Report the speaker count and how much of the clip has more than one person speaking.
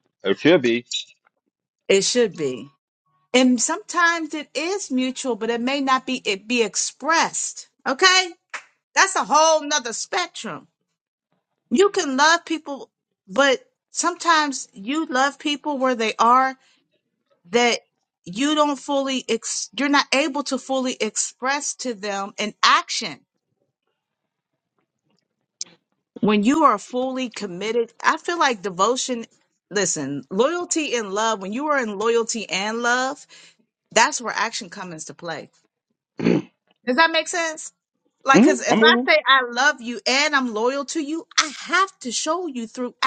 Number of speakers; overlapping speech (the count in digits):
2, about 2%